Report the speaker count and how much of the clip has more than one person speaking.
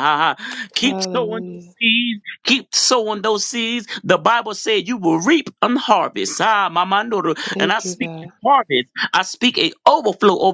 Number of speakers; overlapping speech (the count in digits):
2, about 9%